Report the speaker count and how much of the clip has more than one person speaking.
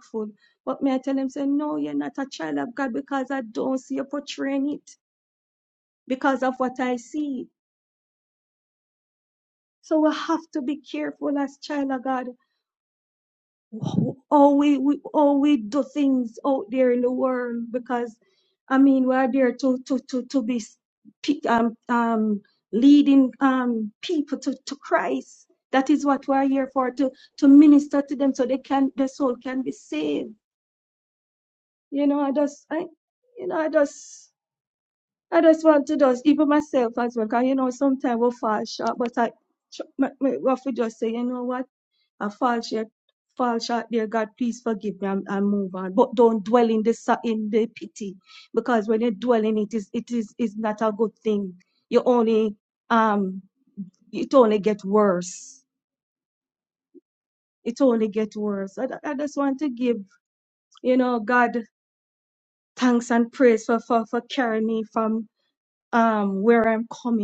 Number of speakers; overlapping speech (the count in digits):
1, no overlap